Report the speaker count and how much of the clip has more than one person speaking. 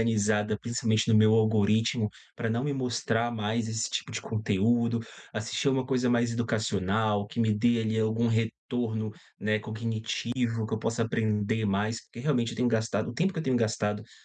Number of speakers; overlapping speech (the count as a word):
one, no overlap